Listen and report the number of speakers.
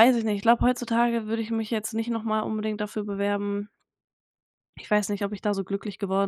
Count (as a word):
one